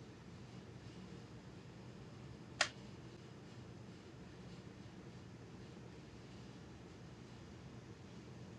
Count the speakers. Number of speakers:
0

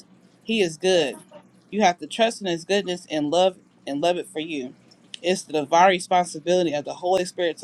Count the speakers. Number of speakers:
1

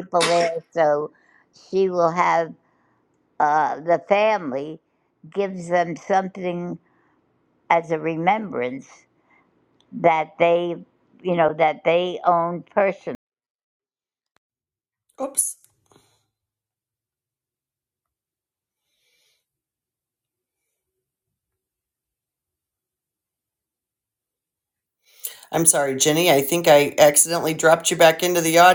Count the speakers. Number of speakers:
2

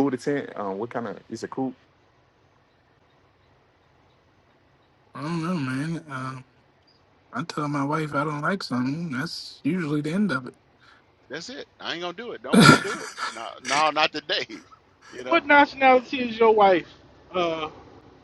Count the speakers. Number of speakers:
4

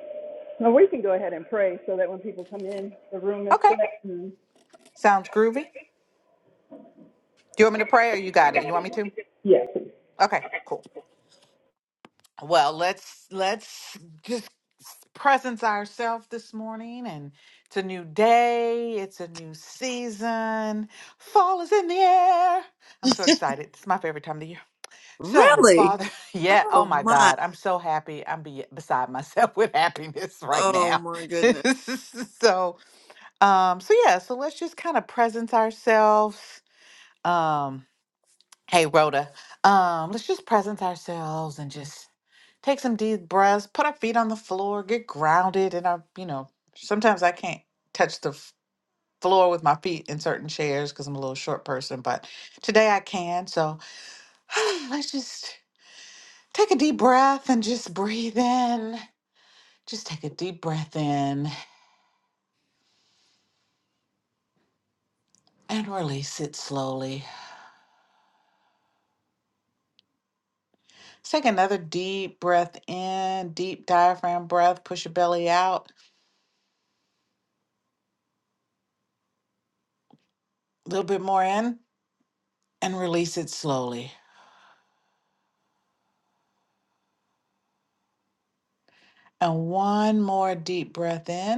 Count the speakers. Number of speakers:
3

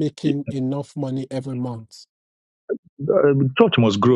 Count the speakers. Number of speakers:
2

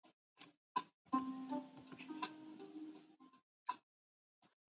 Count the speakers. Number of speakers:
0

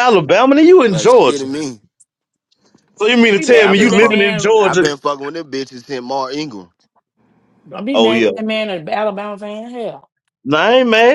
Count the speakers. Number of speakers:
3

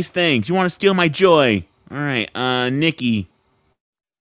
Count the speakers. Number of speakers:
1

